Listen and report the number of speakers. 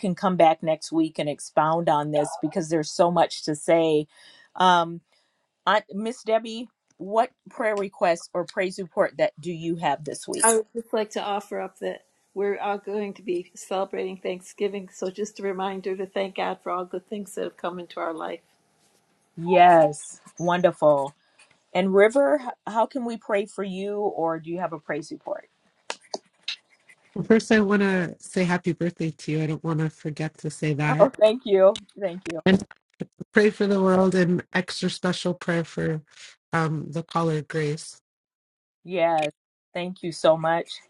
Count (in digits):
3